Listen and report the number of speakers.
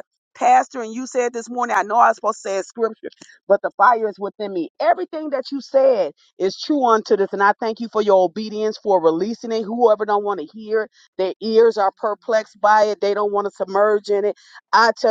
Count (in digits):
1